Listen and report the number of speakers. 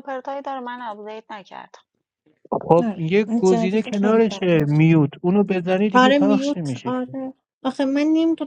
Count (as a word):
three